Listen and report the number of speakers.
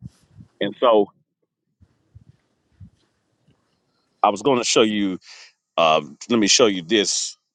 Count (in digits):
1